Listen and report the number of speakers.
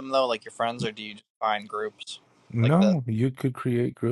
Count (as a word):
two